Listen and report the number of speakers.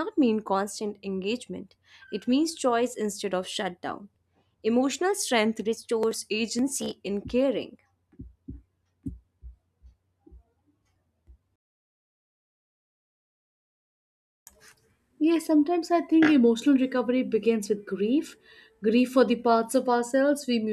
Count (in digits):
2